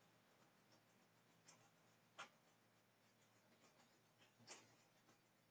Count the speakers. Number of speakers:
zero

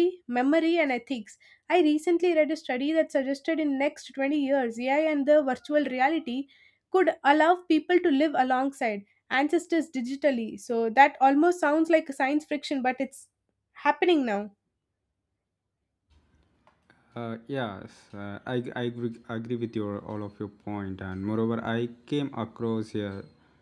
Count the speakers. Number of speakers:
two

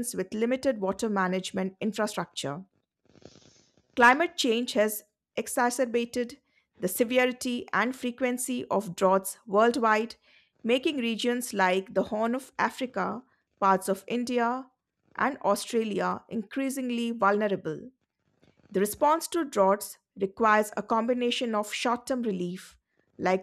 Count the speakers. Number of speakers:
one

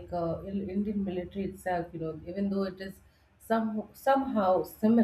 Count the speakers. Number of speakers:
one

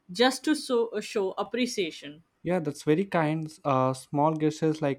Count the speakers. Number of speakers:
two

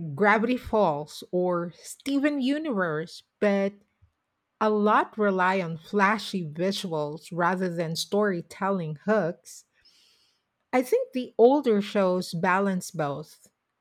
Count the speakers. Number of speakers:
one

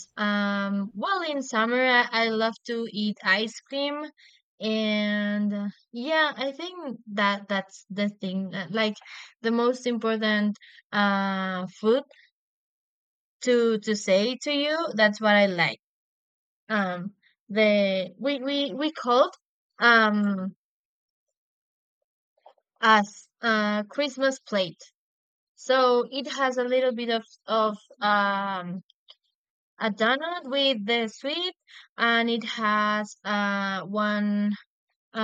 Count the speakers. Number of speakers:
one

